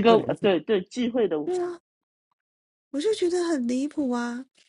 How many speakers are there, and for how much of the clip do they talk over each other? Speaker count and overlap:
2, about 12%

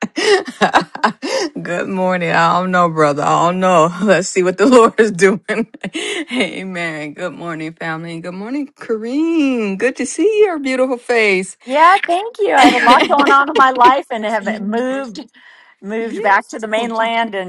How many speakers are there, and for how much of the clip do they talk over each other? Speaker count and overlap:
2, about 2%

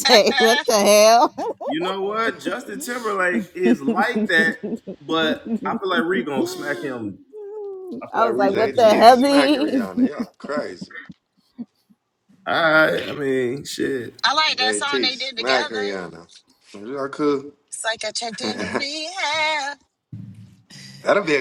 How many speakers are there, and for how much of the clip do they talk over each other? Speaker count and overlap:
4, about 14%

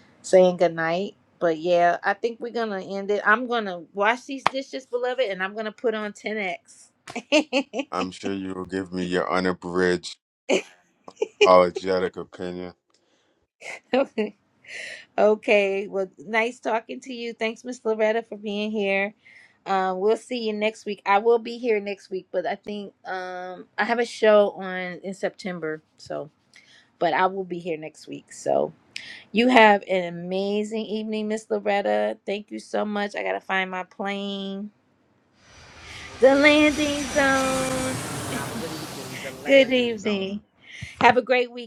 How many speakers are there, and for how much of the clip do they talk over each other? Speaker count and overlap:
3, about 5%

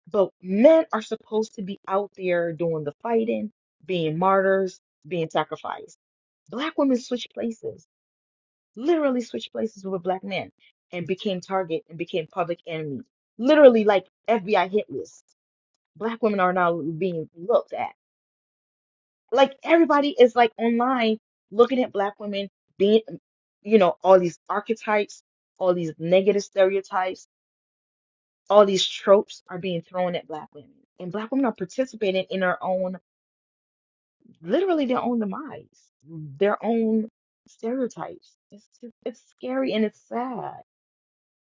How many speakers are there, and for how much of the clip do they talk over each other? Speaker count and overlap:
1, no overlap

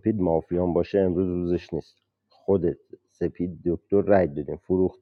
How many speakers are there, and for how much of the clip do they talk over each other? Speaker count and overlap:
1, no overlap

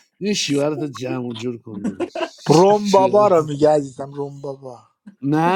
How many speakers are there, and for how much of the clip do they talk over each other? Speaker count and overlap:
2, about 11%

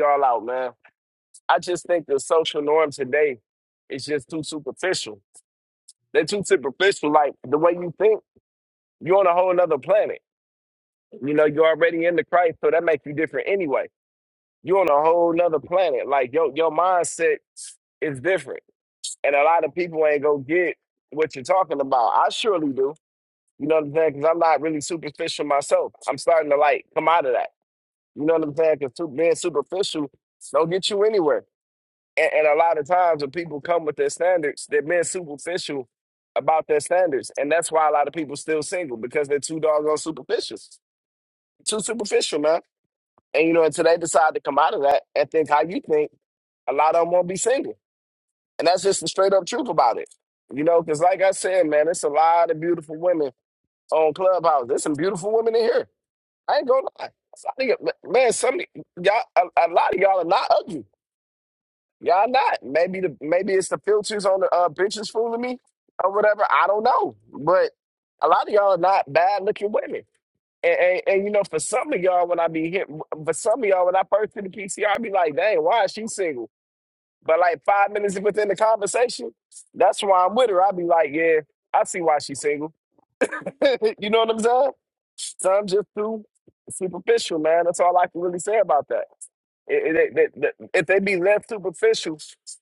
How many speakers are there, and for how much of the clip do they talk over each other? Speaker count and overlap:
1, no overlap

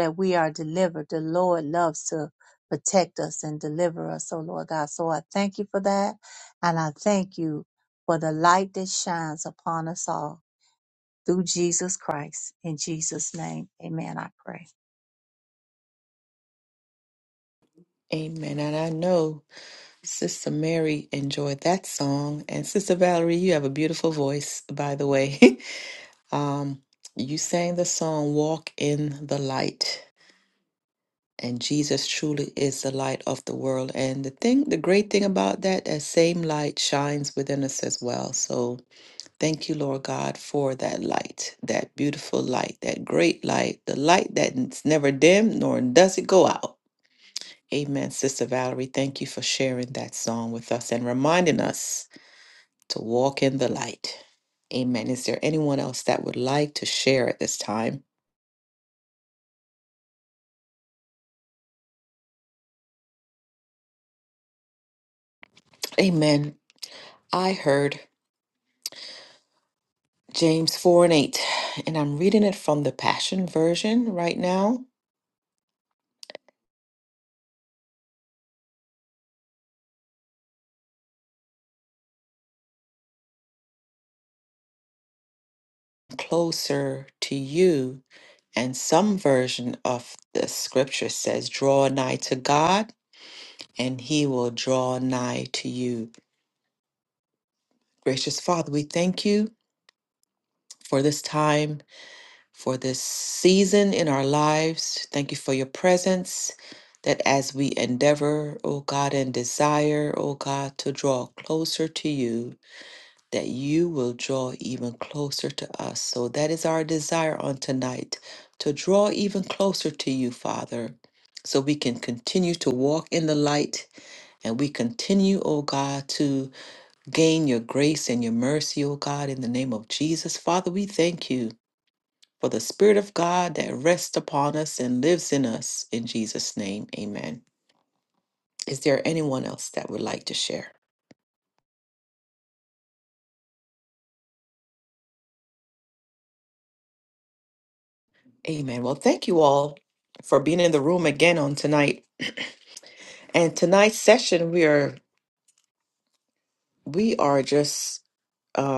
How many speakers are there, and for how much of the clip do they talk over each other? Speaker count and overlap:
2, no overlap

